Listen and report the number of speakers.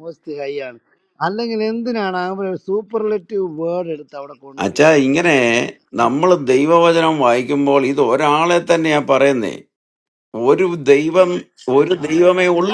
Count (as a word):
two